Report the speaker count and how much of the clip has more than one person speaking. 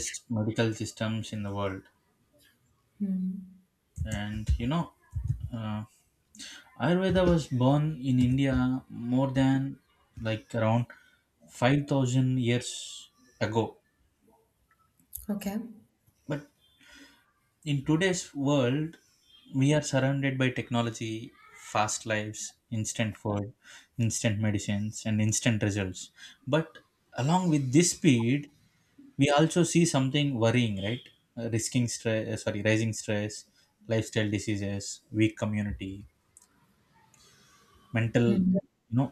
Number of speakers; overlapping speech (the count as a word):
two, under 1%